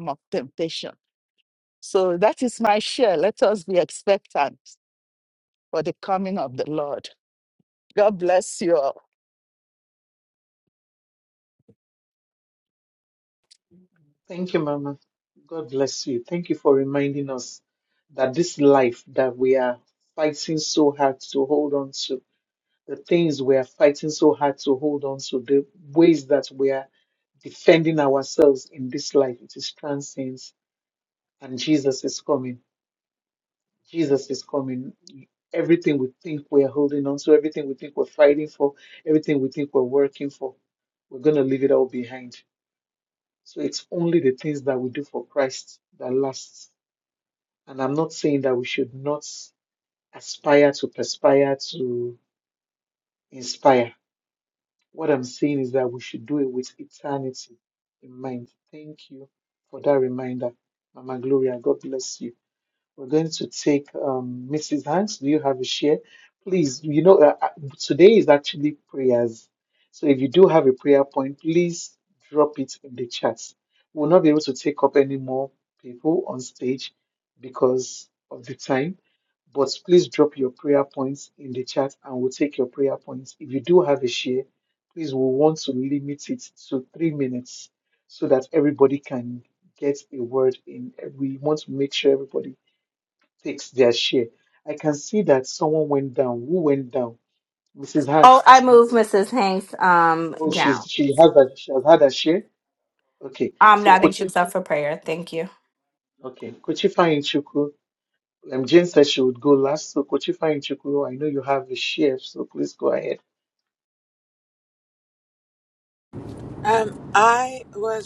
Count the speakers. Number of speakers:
4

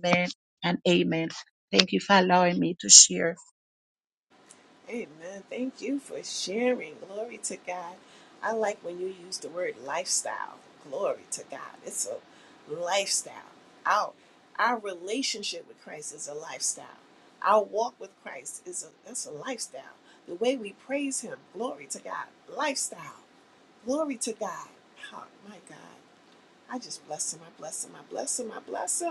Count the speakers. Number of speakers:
2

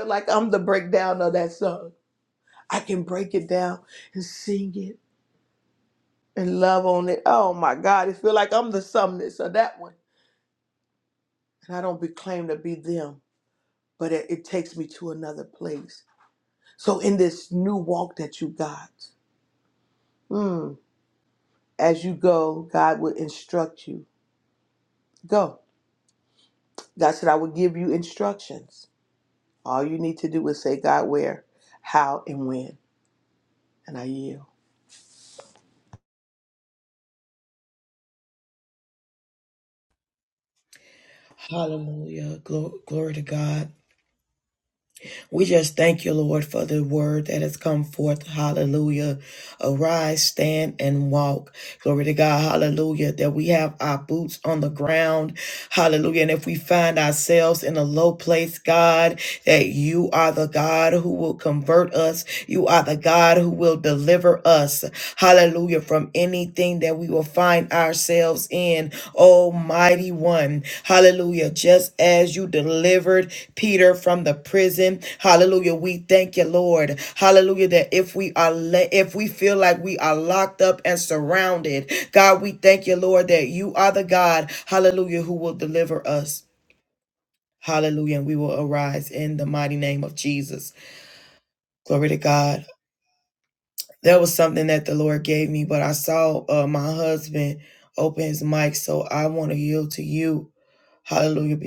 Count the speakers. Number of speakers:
2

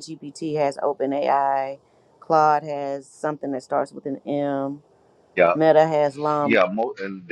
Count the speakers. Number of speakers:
2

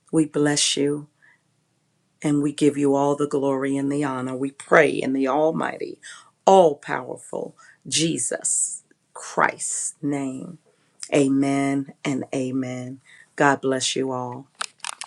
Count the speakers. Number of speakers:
1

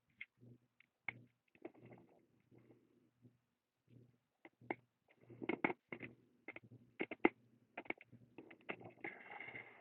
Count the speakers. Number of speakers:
0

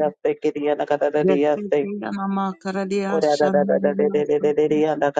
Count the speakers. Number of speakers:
2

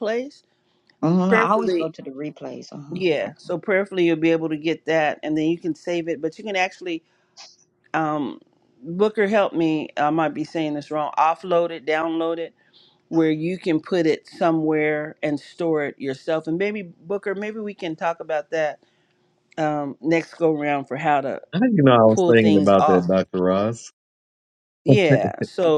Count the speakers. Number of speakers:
3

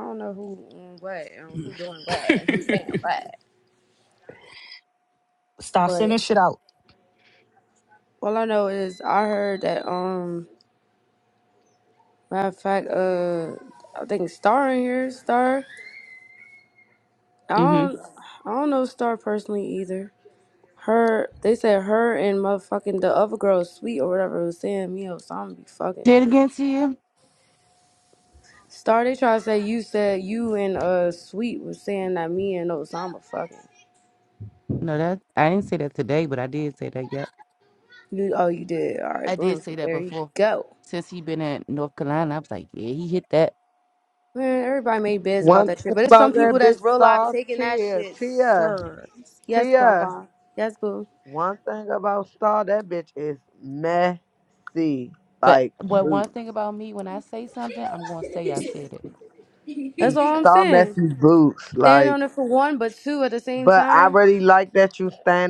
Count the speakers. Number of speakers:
4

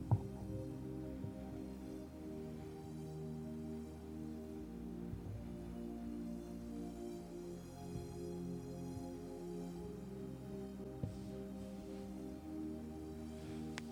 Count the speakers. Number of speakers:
0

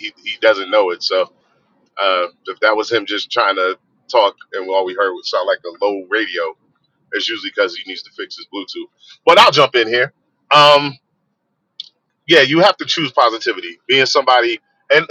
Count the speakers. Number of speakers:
1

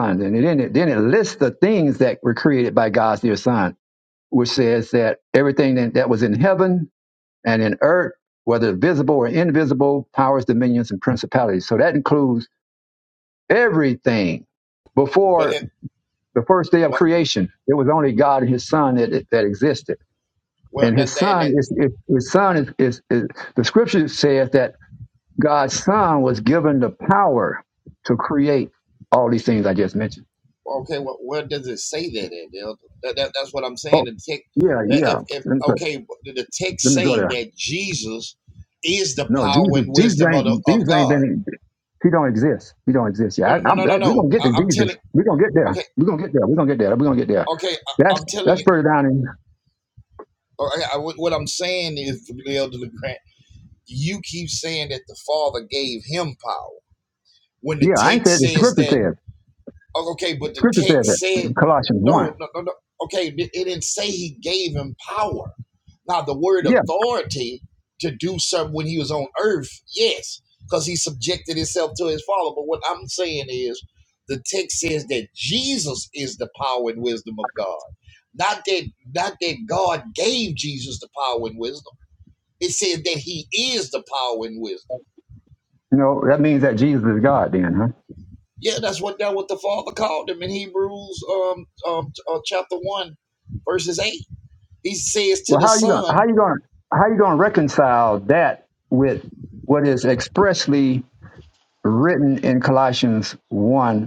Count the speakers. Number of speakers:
2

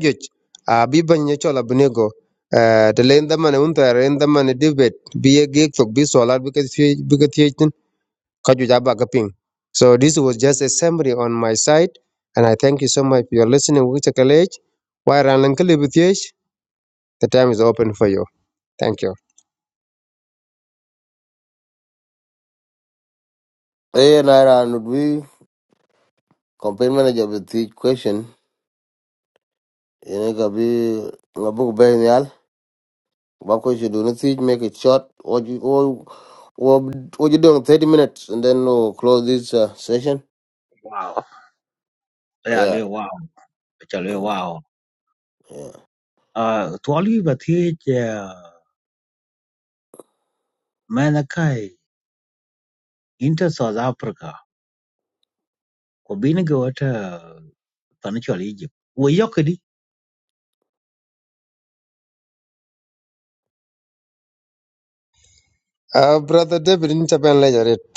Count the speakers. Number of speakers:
3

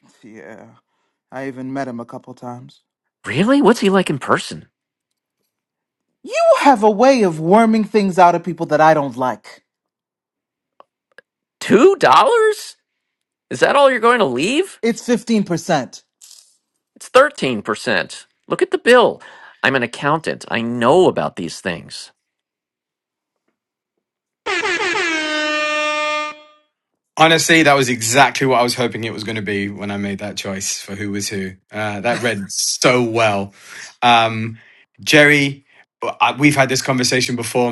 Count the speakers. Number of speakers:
3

